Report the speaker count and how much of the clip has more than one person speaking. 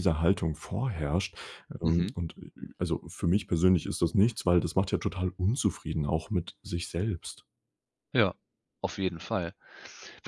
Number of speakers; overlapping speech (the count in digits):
2, about 3%